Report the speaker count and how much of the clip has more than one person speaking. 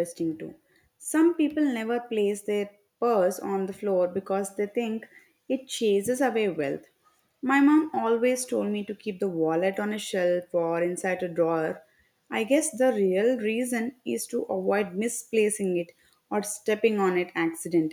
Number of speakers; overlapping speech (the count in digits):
1, no overlap